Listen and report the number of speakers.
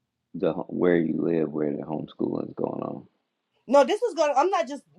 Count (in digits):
2